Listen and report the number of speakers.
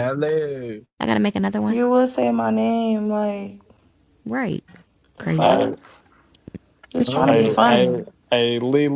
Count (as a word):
four